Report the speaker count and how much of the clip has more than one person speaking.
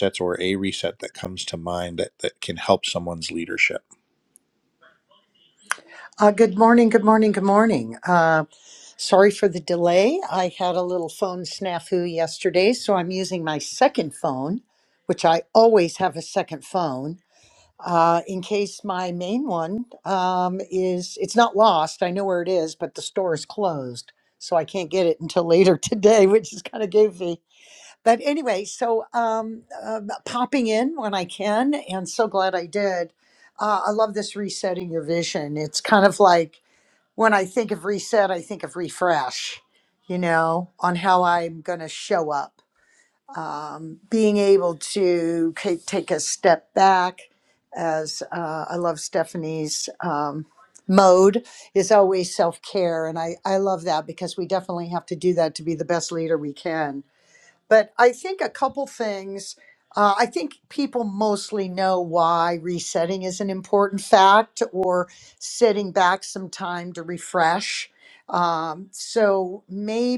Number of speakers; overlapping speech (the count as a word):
two, no overlap